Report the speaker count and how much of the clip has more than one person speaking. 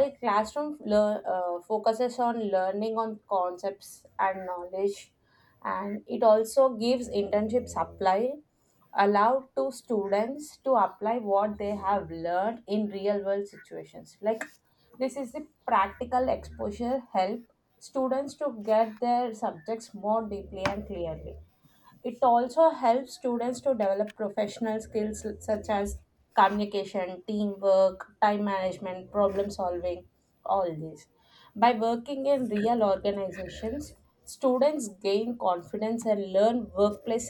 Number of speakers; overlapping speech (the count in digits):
1, no overlap